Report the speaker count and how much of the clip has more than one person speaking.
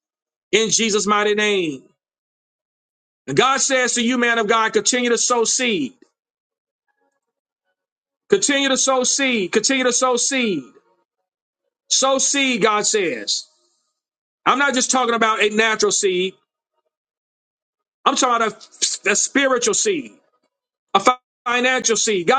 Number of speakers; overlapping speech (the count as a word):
one, no overlap